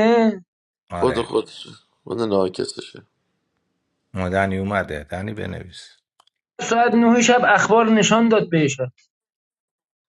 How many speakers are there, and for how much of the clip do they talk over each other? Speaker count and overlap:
3, about 3%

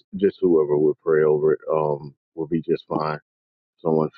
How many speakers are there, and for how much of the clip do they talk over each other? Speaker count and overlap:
1, no overlap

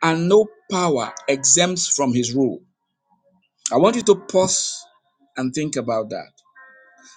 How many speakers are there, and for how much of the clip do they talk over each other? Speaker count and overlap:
1, no overlap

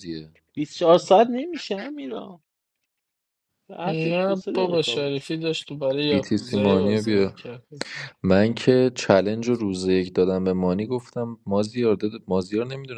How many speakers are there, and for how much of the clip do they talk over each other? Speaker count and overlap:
3, about 17%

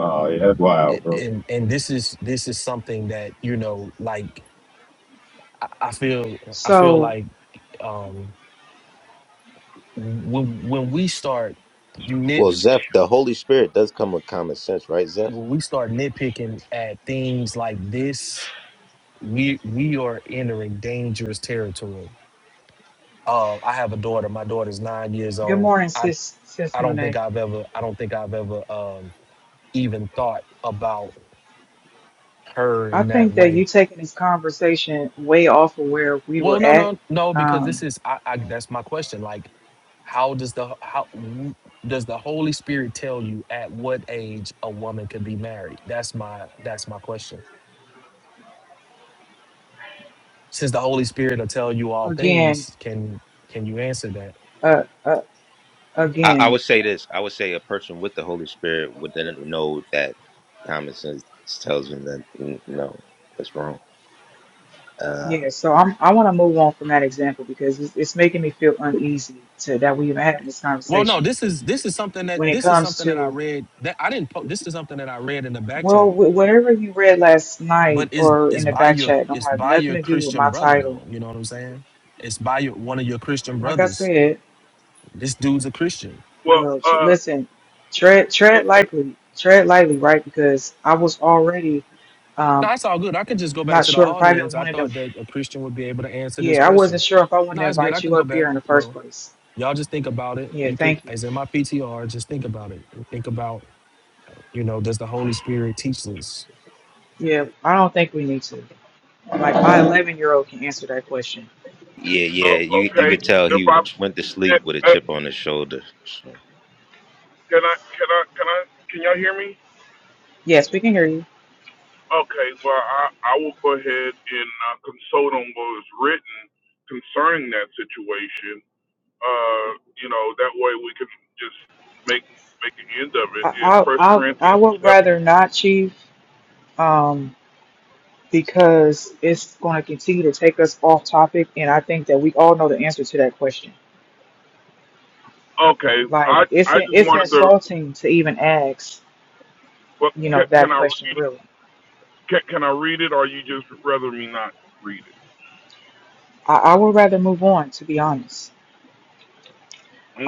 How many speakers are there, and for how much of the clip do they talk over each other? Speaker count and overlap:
5, about 13%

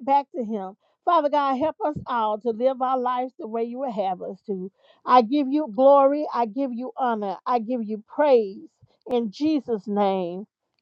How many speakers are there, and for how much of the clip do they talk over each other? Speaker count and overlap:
1, no overlap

